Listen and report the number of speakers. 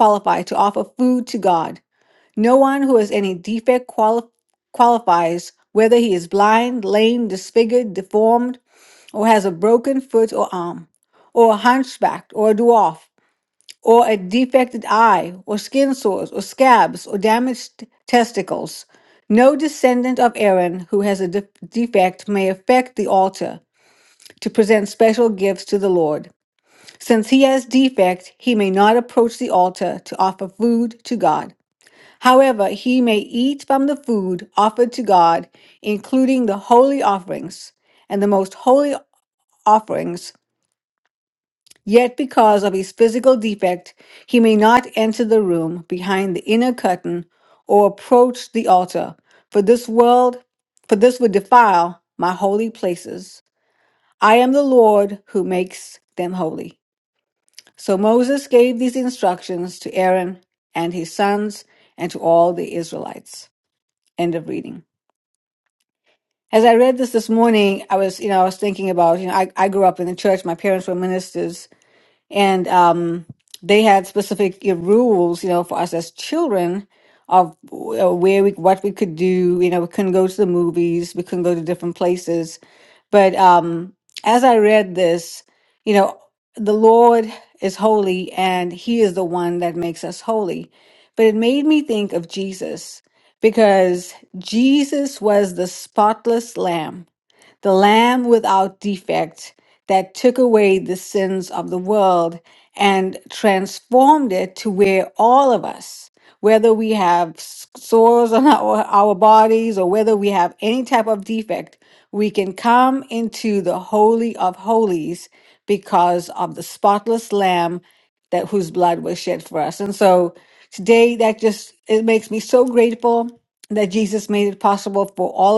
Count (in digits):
1